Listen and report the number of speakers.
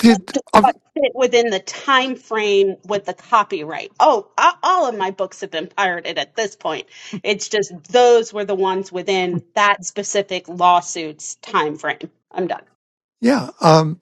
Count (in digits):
2